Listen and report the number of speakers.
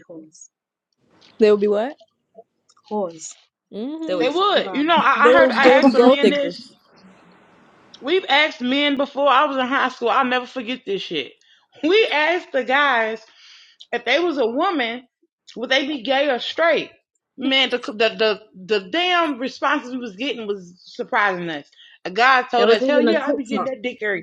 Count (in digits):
3